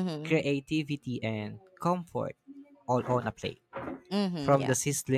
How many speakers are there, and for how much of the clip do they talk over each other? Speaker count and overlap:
two, about 9%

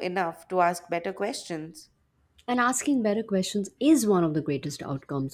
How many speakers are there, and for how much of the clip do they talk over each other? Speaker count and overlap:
two, no overlap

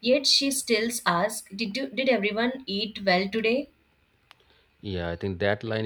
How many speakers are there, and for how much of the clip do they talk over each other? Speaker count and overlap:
two, no overlap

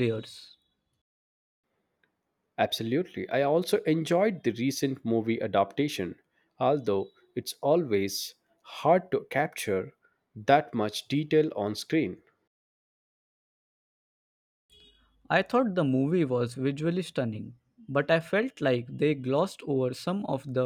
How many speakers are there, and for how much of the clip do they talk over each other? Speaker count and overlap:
two, no overlap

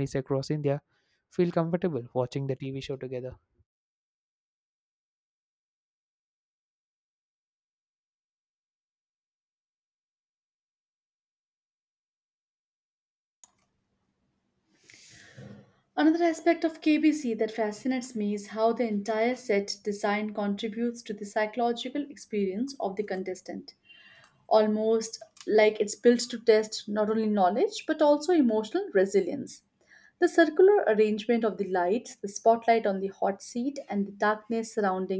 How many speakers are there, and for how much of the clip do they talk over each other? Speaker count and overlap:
two, no overlap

